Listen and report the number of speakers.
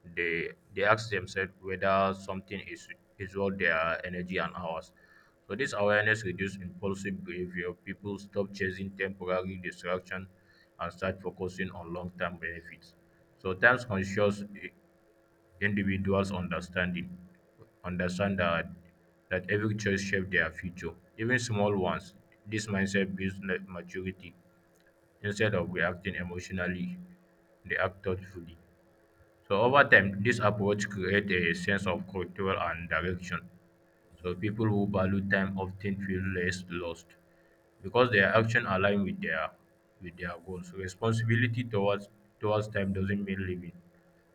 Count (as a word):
one